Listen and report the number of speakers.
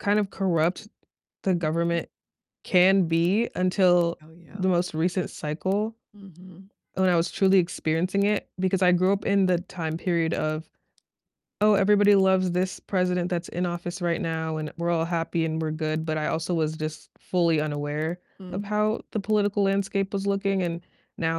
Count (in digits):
2